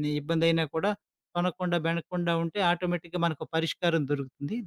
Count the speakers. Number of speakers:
1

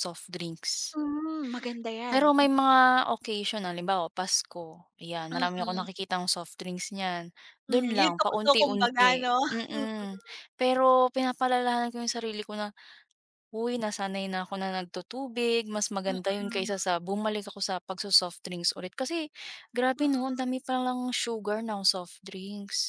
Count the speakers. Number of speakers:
2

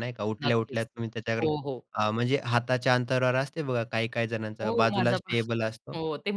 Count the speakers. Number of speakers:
2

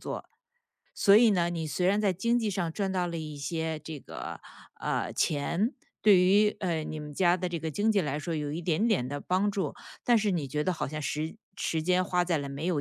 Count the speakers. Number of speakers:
1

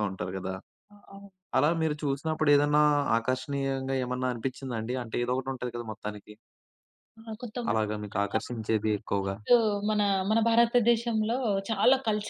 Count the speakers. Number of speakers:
2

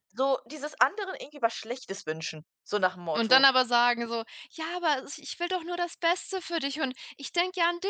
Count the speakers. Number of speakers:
2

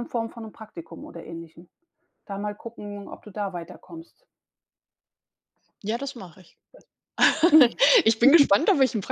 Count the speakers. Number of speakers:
2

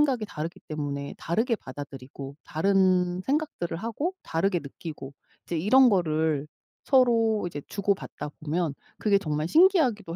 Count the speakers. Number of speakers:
1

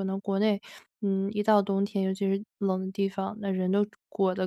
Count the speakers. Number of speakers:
1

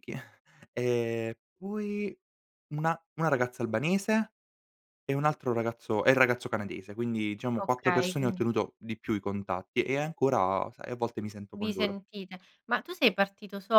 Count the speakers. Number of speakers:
2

